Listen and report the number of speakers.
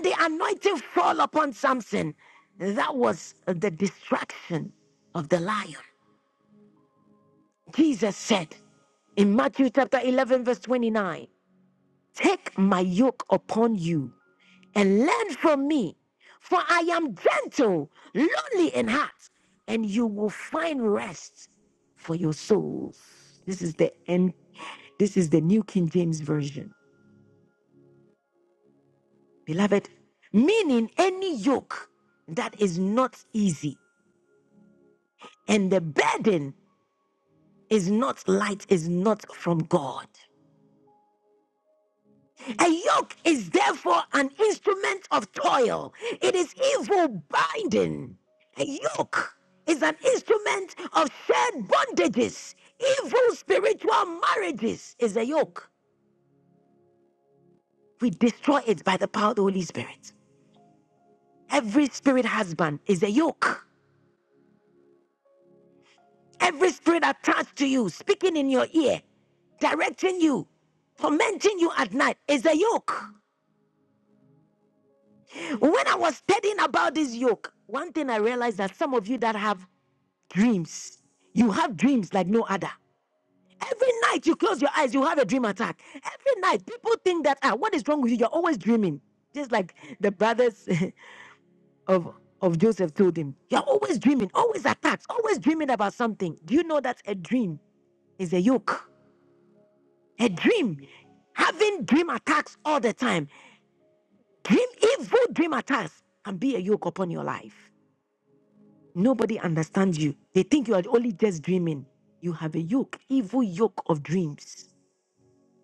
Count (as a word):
one